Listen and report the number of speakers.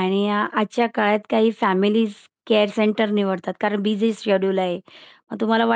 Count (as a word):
one